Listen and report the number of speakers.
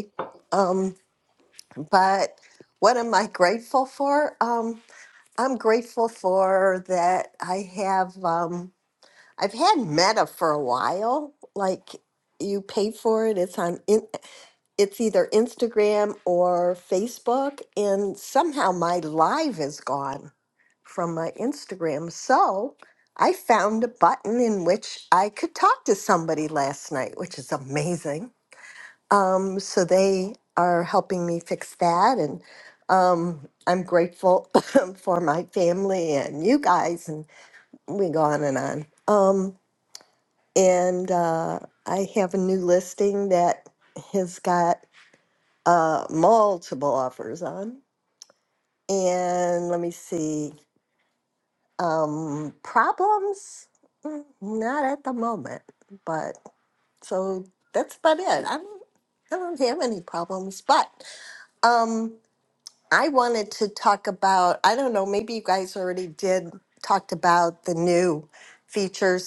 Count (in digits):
1